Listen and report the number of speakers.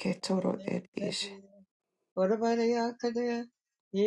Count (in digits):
2